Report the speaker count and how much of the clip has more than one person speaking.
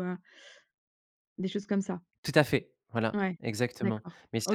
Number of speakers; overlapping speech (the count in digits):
2, about 11%